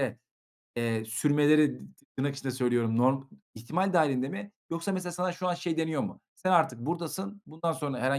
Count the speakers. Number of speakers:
1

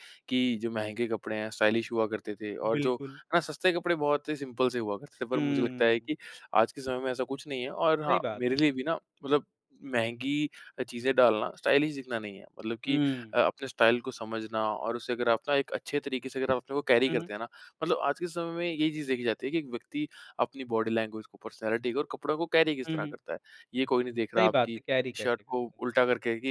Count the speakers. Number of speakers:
2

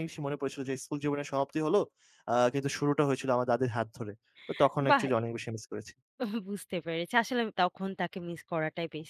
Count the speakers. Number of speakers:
2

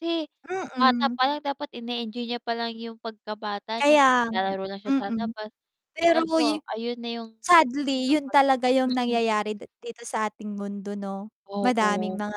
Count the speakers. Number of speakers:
2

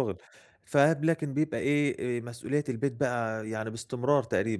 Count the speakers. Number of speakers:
1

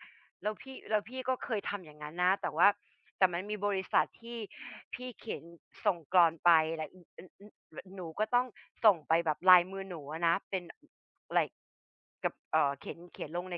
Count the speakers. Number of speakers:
1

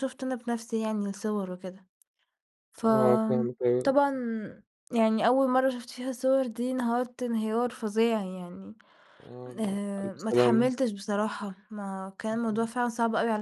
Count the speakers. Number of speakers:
2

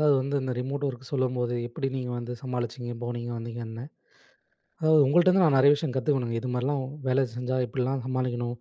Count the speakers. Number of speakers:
1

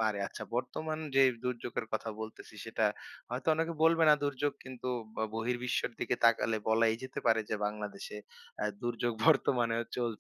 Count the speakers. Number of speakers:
1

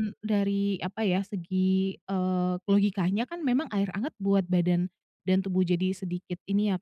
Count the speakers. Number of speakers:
1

